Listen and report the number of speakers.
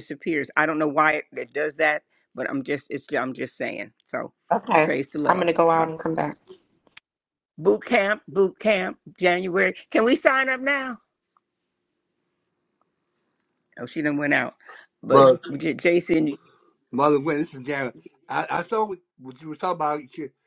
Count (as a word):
three